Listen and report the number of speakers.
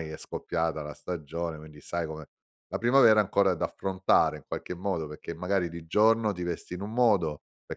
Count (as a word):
one